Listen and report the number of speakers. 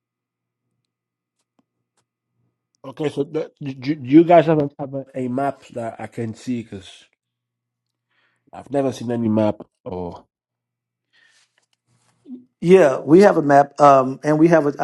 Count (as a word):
two